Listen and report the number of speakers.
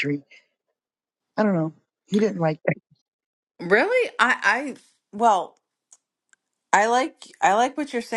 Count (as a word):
two